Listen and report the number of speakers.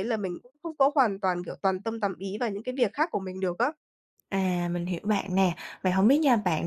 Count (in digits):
2